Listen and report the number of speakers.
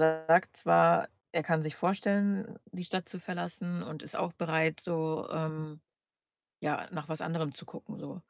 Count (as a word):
one